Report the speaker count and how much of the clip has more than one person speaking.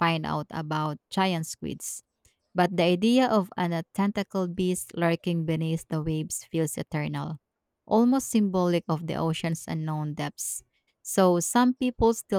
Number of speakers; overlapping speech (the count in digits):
1, no overlap